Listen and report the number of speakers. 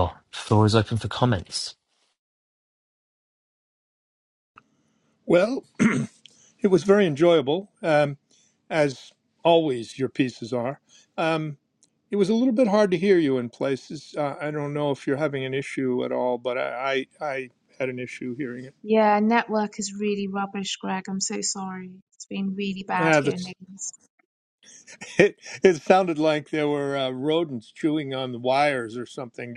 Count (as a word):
three